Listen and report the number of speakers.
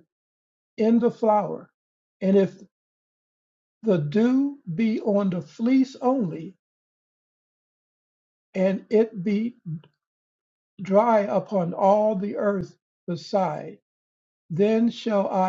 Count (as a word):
one